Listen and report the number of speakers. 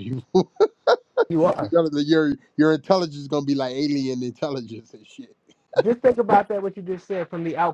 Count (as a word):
two